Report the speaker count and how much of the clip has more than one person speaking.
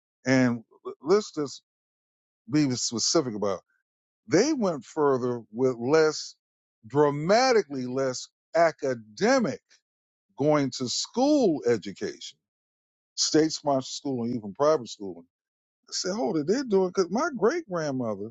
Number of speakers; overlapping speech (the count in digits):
1, no overlap